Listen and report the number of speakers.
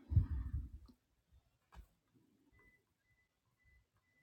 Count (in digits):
0